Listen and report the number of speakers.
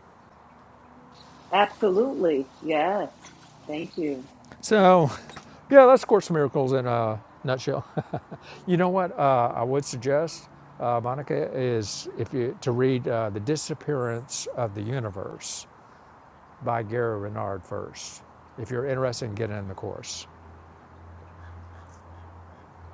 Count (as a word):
two